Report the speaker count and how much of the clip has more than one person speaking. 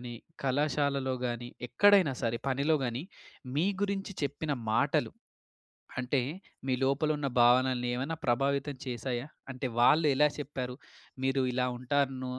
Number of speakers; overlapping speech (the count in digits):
1, no overlap